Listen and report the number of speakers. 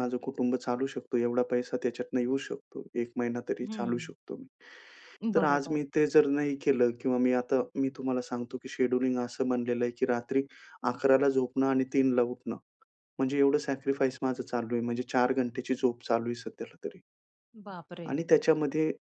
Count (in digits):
2